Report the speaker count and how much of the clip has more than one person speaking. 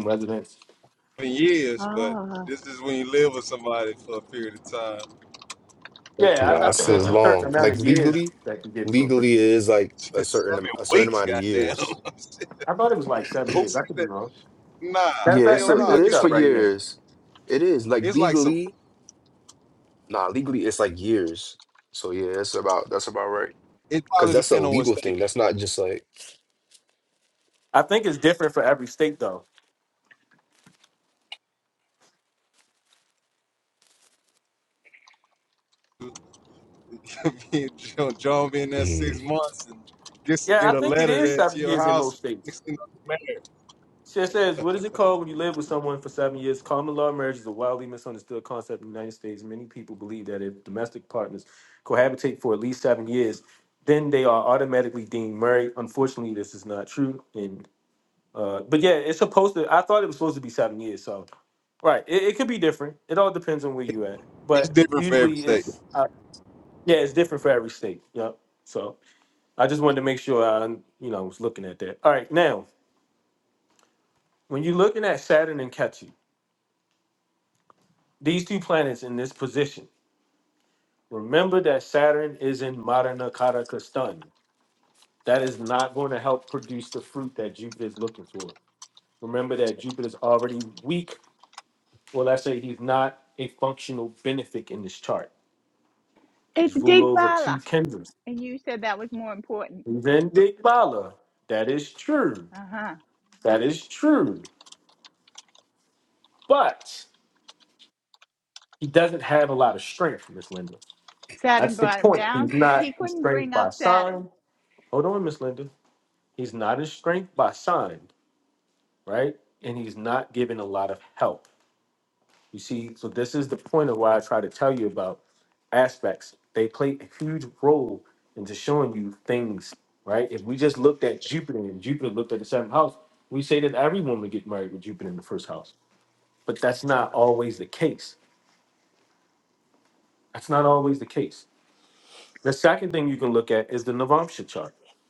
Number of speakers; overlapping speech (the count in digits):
4, about 10%